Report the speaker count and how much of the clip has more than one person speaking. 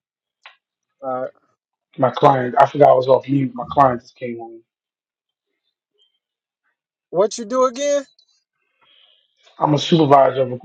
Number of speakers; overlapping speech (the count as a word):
two, no overlap